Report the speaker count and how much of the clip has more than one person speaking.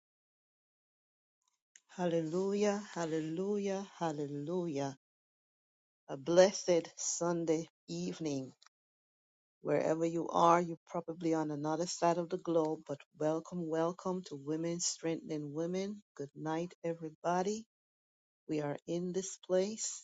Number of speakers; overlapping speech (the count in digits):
1, no overlap